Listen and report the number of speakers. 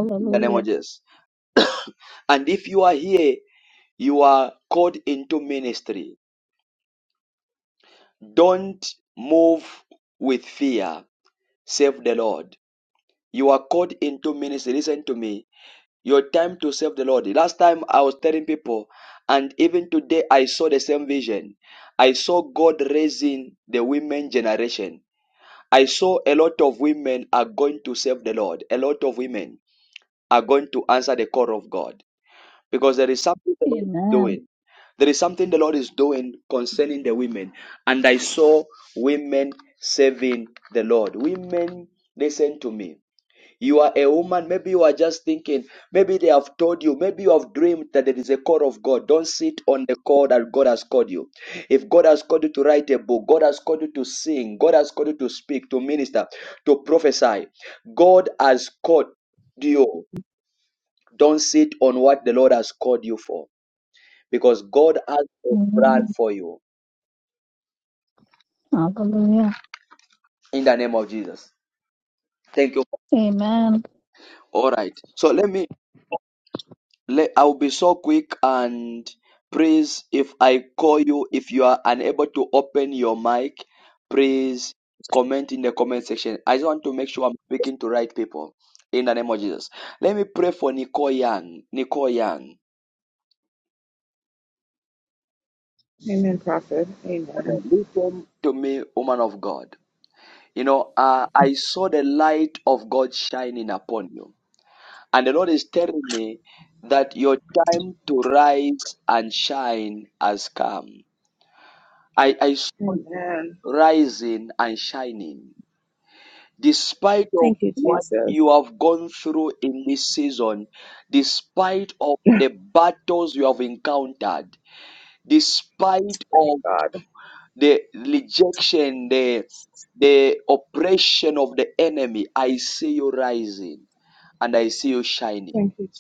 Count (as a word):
three